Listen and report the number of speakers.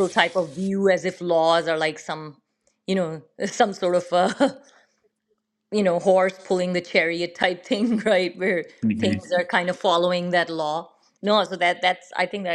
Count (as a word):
one